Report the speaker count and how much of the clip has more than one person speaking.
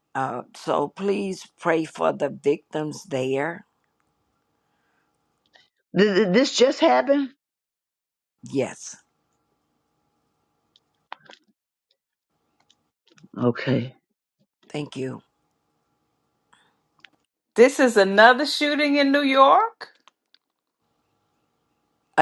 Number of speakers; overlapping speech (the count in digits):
3, no overlap